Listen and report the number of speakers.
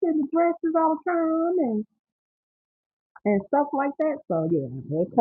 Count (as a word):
one